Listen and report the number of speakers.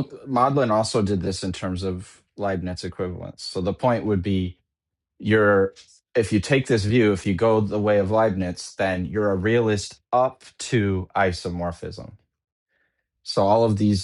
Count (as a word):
one